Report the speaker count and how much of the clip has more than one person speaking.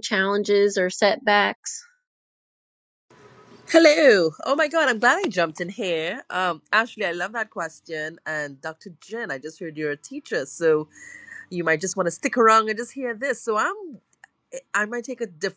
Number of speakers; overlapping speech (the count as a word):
two, no overlap